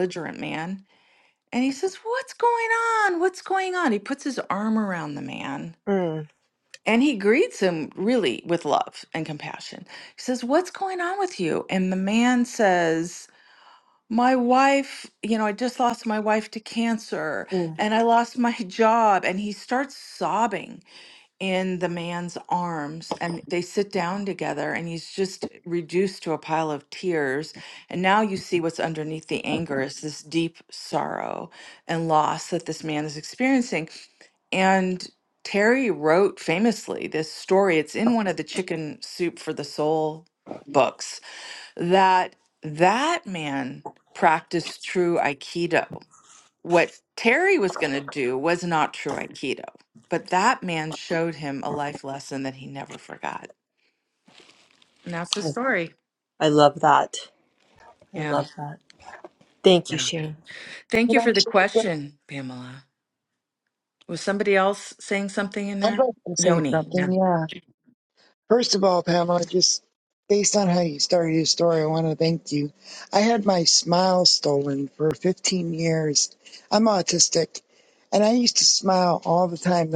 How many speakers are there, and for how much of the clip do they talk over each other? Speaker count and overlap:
three, about 3%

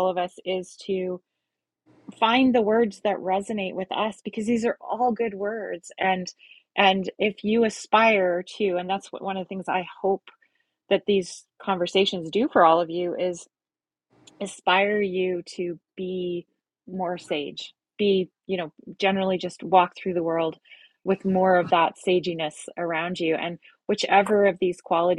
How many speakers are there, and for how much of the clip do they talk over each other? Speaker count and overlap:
one, no overlap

